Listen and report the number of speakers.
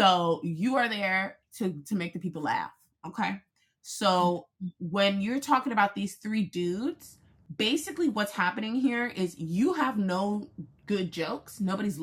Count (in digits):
1